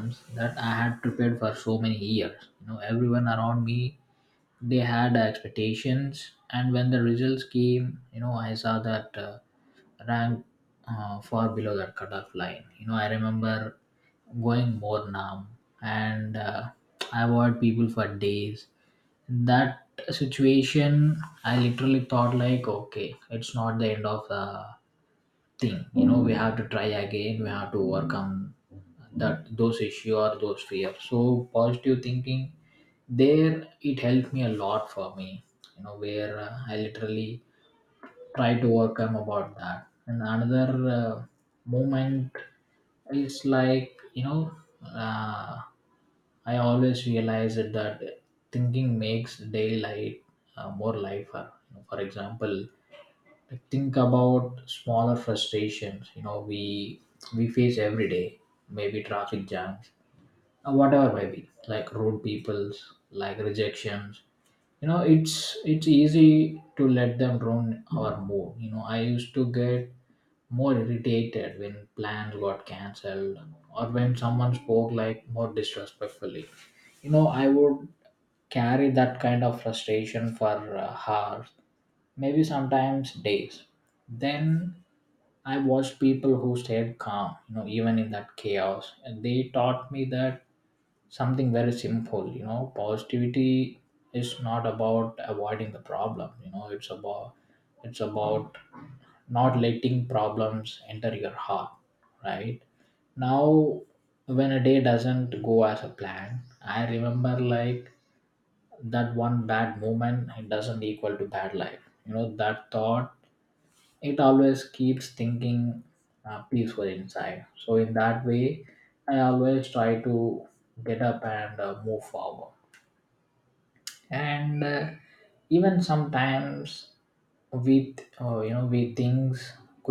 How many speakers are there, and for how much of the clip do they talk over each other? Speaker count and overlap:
one, no overlap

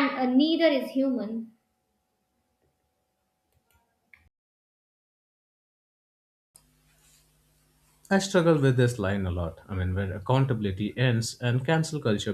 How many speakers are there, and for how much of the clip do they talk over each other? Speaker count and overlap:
two, no overlap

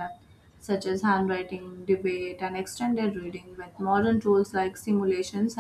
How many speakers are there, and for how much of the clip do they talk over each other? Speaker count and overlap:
one, no overlap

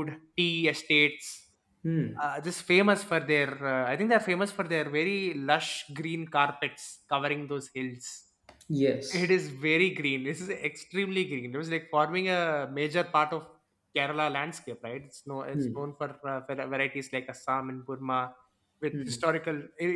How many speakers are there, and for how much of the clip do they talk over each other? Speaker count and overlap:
two, about 2%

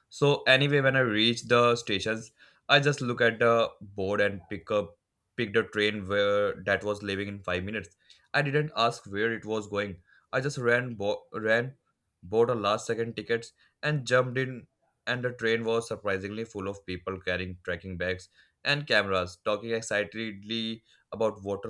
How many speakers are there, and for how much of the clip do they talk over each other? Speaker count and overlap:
one, no overlap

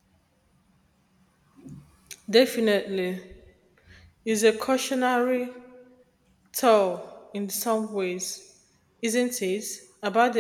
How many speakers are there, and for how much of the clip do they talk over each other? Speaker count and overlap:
one, no overlap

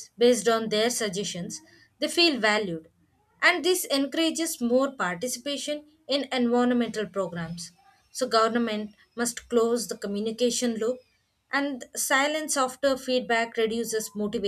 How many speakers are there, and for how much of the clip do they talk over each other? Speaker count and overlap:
one, no overlap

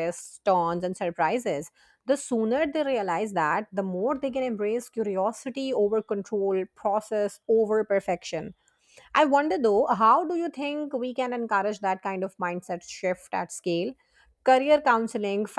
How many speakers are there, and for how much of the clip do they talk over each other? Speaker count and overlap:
one, no overlap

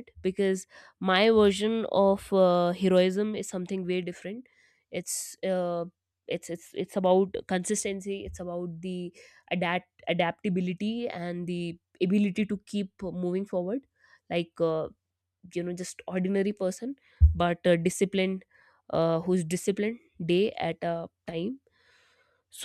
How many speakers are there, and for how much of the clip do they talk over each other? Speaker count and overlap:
one, no overlap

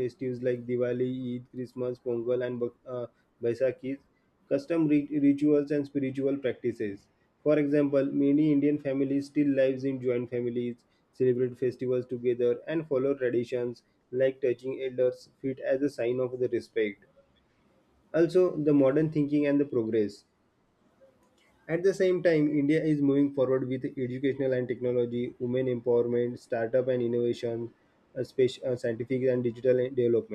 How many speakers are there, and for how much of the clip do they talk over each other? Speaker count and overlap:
one, no overlap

